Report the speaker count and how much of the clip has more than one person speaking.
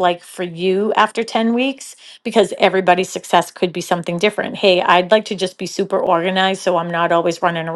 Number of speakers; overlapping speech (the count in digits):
1, no overlap